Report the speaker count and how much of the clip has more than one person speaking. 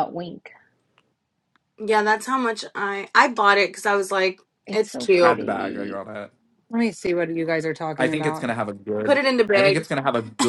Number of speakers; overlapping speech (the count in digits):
4, about 20%